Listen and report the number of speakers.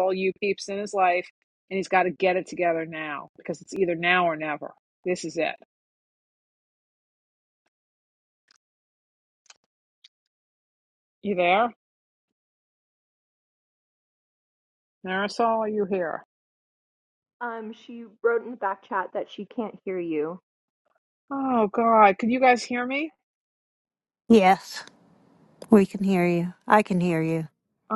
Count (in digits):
3